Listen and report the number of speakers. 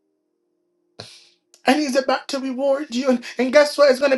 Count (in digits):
1